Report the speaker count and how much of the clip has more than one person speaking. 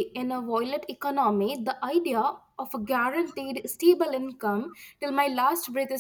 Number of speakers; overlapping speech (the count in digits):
1, no overlap